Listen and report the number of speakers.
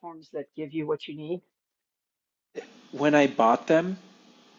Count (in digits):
2